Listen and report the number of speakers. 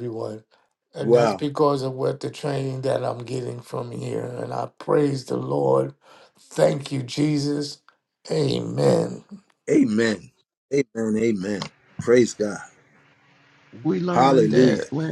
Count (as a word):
three